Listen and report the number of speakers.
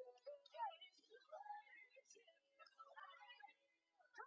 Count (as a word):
zero